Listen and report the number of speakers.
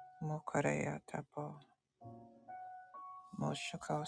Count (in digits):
1